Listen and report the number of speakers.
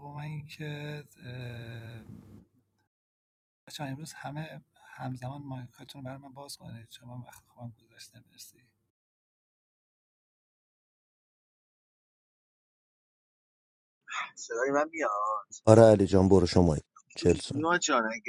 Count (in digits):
3